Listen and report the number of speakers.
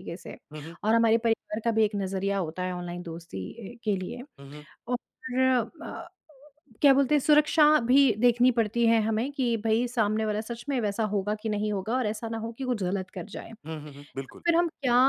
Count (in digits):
2